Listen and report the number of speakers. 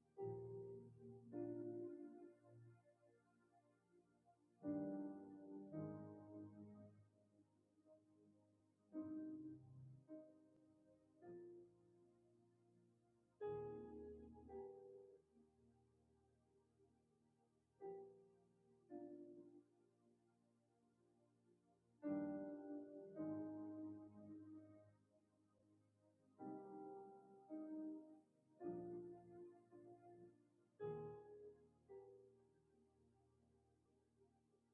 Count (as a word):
zero